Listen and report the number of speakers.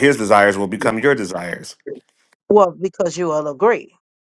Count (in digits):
2